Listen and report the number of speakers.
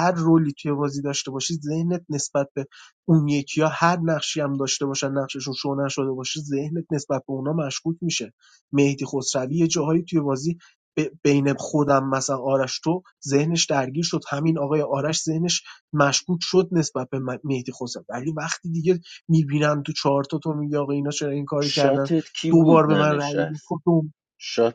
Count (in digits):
2